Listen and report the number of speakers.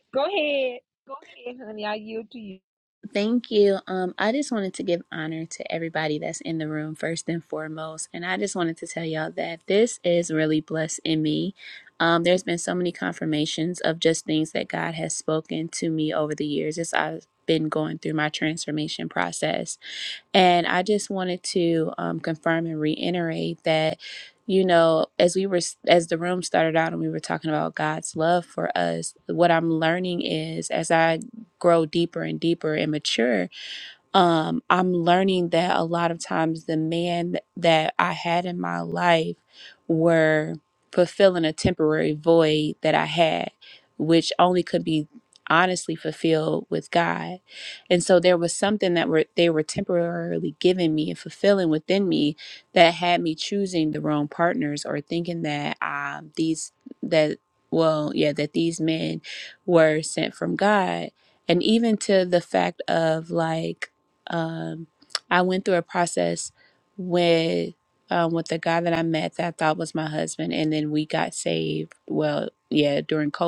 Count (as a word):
two